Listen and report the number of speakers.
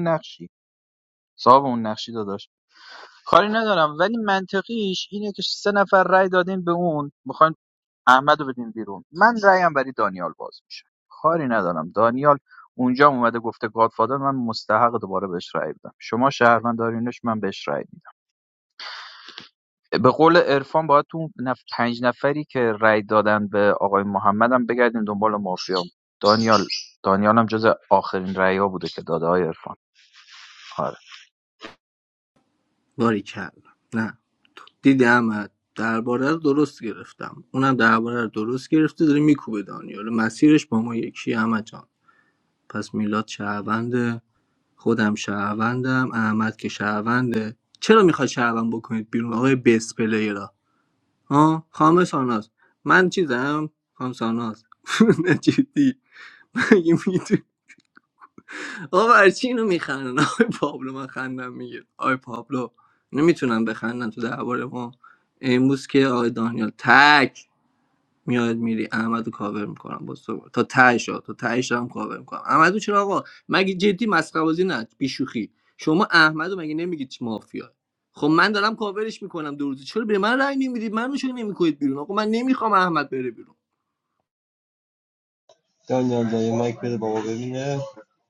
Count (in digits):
3